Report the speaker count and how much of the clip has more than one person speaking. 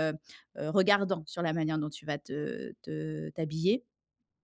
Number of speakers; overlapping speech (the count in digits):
1, no overlap